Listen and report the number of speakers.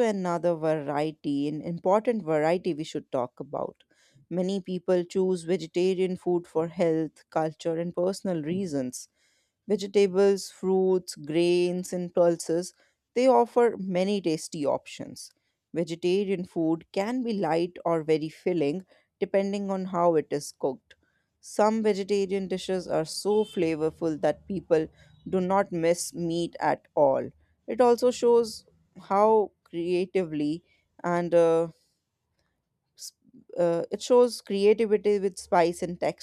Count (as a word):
one